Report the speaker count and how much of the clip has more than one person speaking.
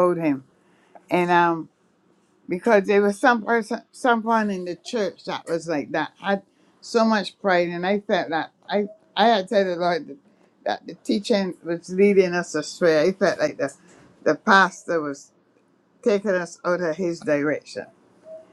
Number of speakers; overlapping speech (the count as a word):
one, no overlap